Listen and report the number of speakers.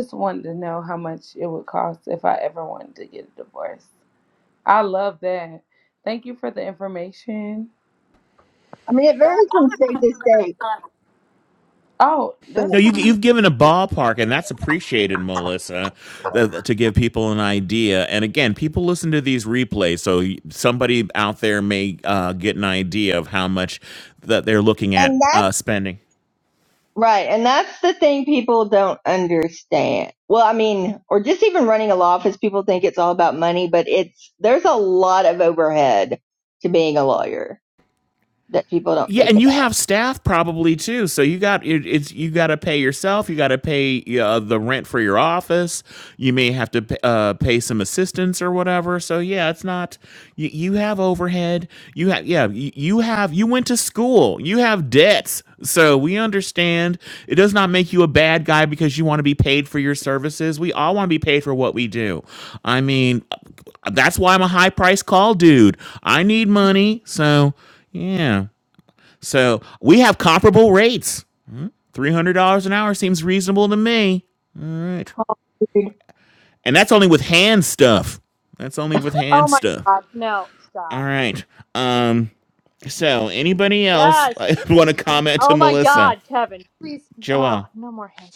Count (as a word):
four